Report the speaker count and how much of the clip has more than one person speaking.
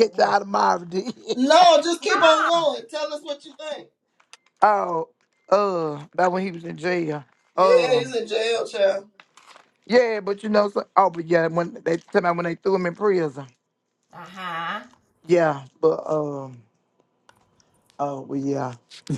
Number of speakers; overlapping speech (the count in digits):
3, about 7%